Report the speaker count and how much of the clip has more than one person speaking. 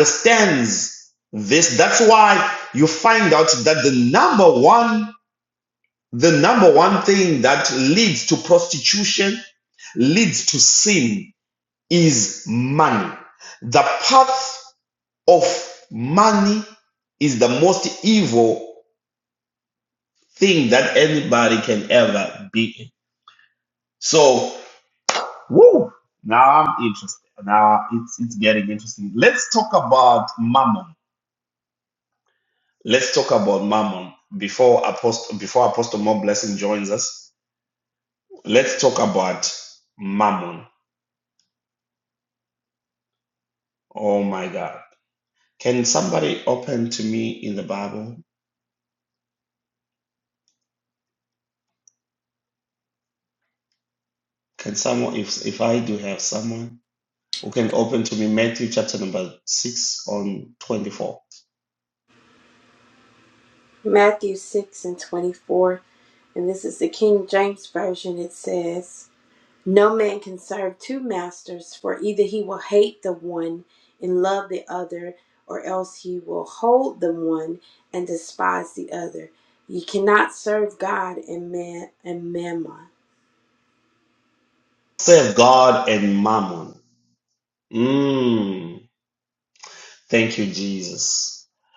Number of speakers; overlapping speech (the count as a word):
two, no overlap